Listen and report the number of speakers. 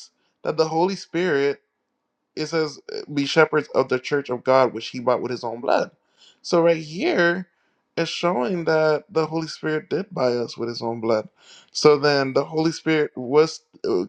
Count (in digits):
1